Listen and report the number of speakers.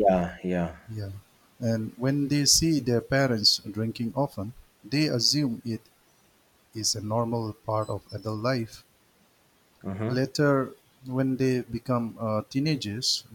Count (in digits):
2